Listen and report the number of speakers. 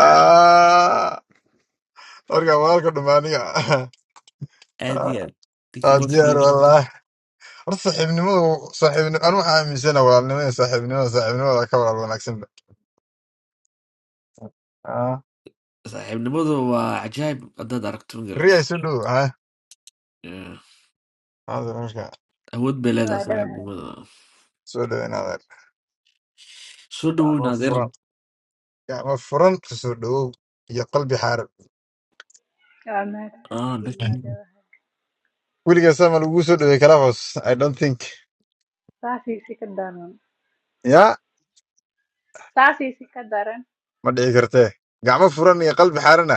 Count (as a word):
three